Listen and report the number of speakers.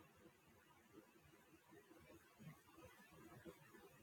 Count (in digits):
0